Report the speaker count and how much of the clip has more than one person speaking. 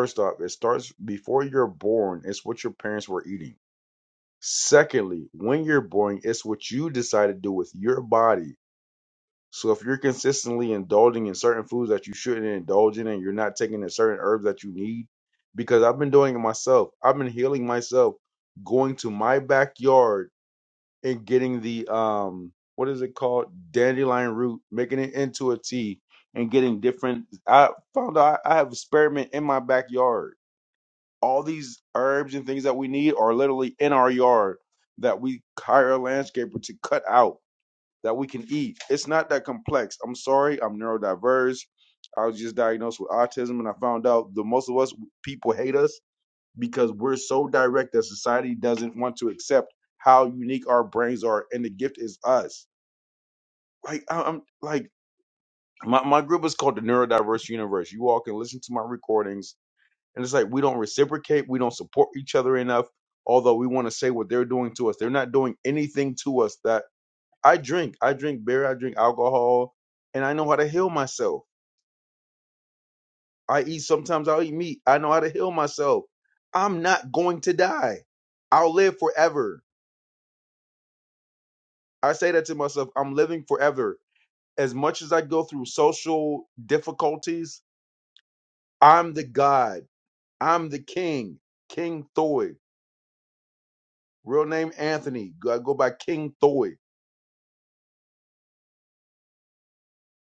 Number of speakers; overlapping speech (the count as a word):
one, no overlap